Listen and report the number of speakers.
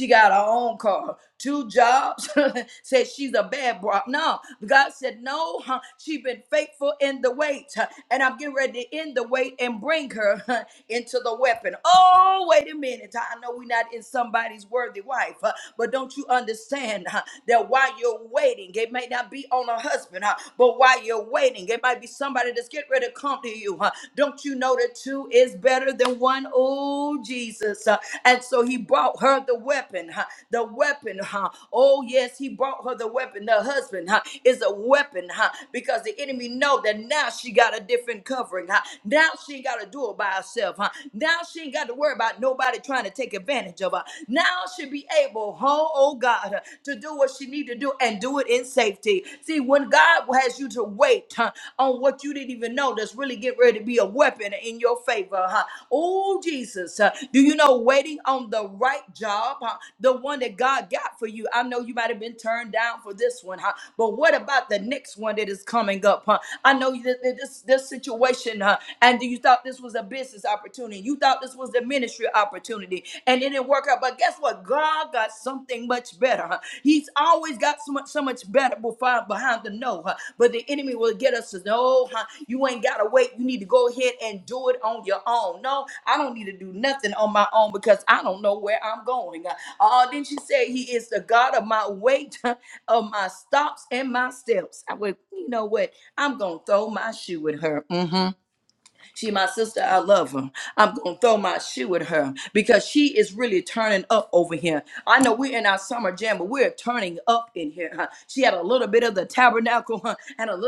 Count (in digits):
1